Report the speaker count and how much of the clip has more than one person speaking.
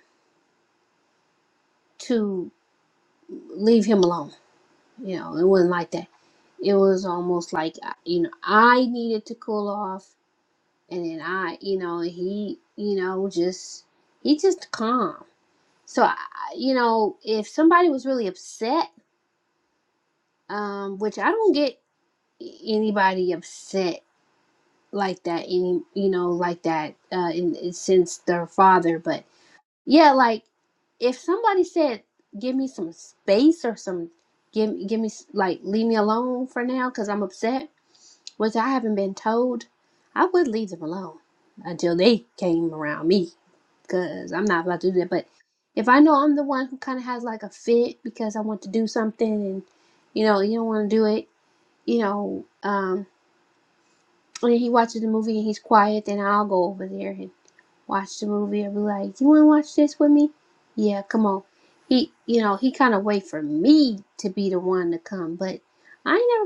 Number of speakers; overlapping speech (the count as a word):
one, no overlap